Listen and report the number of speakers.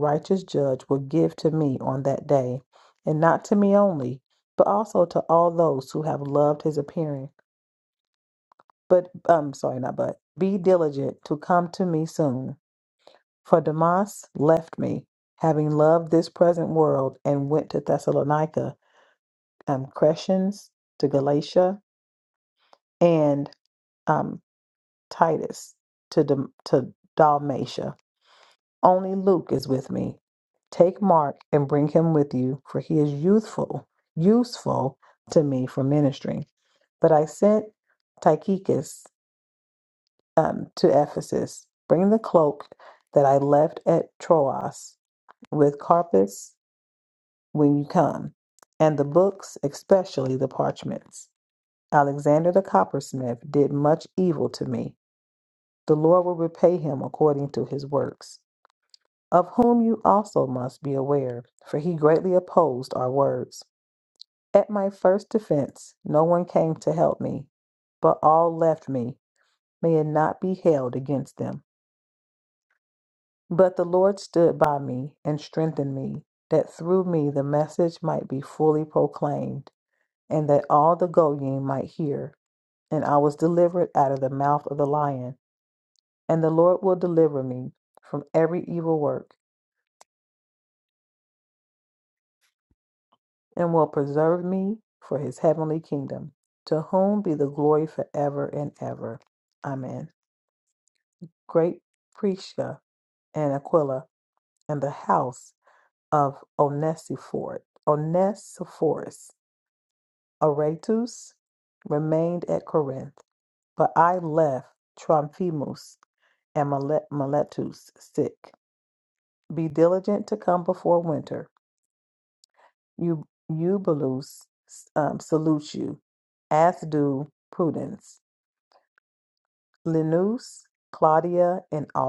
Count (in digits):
1